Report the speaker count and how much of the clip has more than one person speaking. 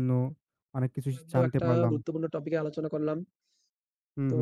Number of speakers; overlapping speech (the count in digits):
2, about 23%